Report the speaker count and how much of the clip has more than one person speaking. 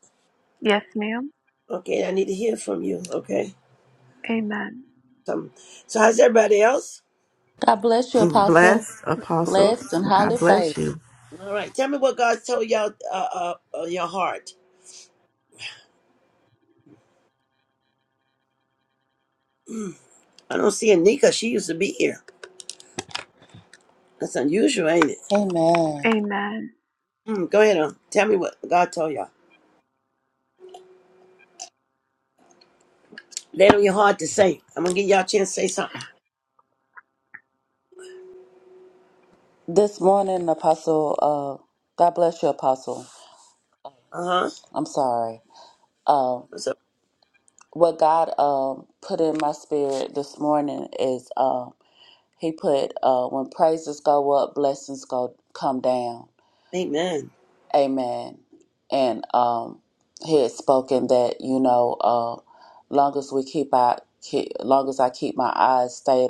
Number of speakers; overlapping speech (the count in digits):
4, about 3%